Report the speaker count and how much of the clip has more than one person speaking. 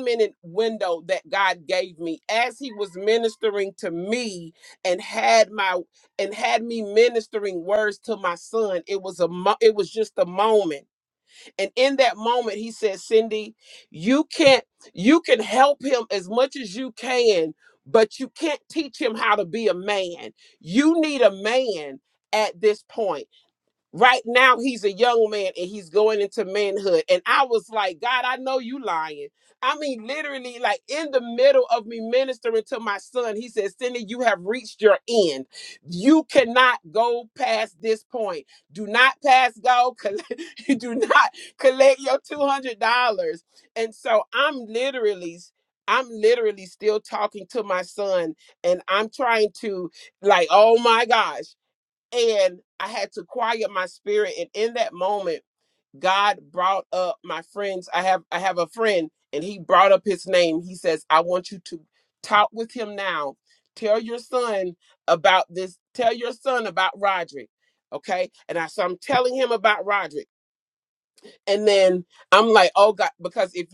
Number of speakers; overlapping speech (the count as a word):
one, no overlap